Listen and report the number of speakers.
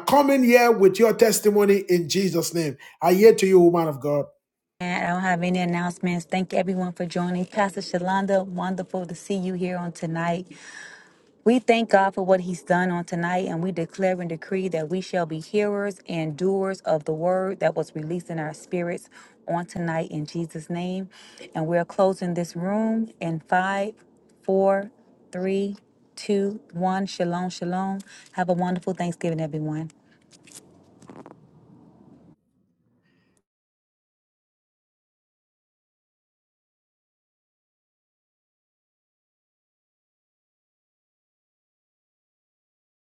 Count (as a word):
two